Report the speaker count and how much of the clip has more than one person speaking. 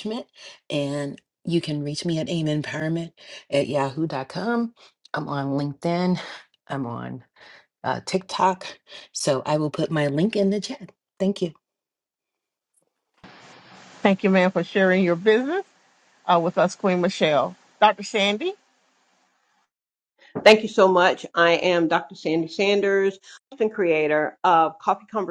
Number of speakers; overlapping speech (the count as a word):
three, no overlap